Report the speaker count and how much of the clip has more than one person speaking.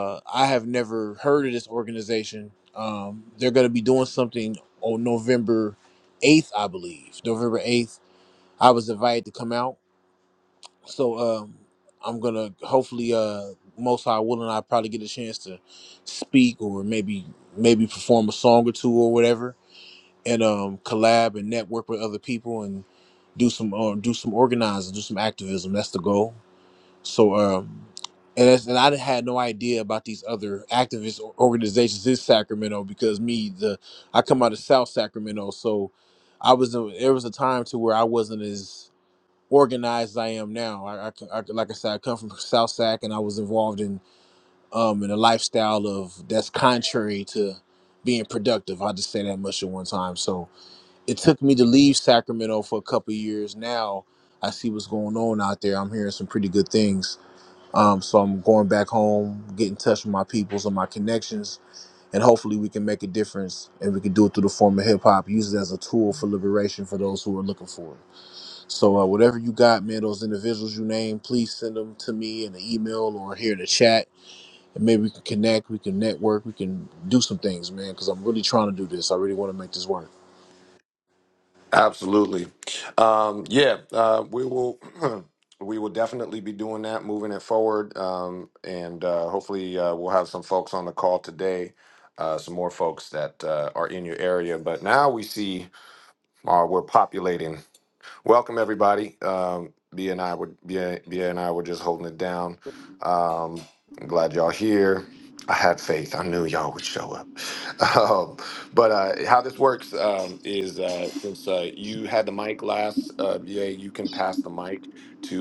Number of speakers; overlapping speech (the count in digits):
2, no overlap